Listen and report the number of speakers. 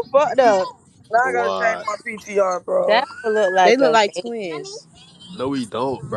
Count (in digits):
4